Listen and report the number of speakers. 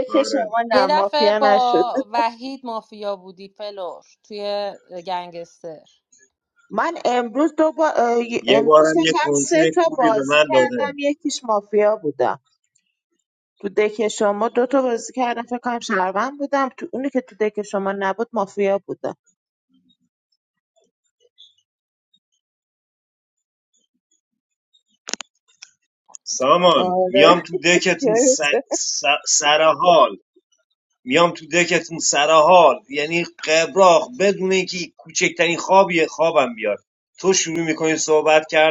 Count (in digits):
3